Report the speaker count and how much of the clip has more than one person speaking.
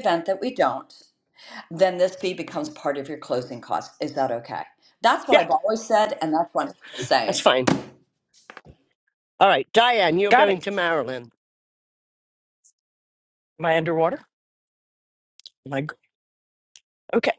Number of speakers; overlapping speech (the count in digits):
3, about 3%